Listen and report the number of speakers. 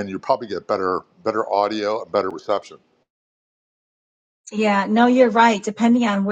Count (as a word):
two